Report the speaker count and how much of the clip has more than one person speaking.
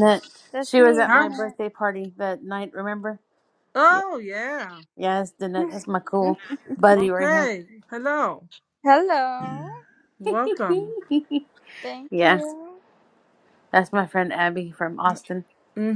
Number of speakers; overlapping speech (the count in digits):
3, about 11%